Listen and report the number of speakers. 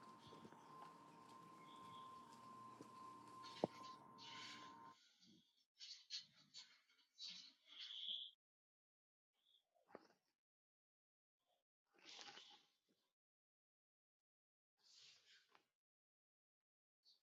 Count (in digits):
0